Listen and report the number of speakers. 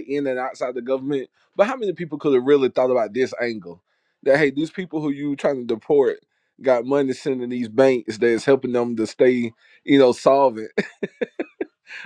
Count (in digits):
1